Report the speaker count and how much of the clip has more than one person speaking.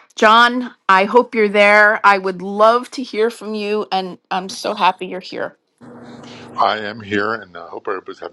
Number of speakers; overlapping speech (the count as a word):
two, no overlap